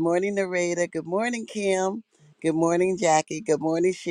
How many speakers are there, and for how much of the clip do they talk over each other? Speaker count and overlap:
1, no overlap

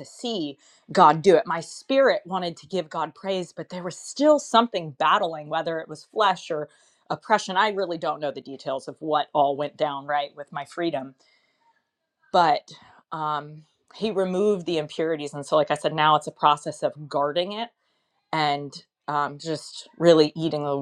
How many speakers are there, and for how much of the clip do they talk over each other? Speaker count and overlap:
1, no overlap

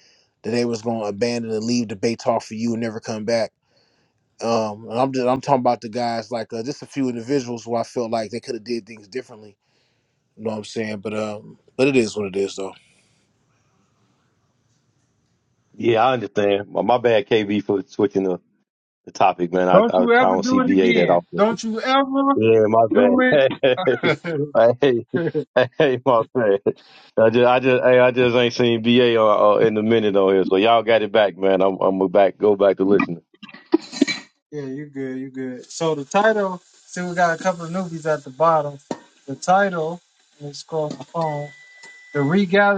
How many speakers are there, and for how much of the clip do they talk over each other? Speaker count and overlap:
3, about 5%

